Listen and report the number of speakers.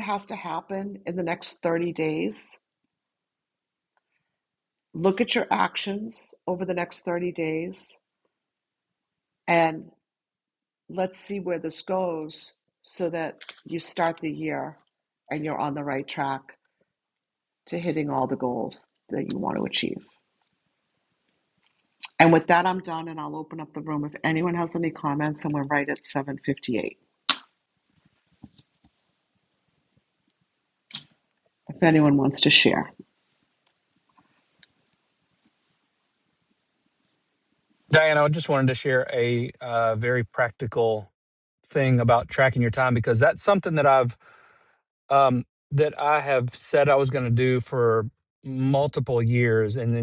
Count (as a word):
two